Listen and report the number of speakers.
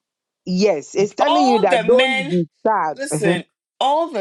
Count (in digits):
2